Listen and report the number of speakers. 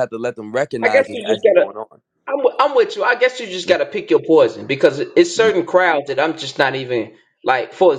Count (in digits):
2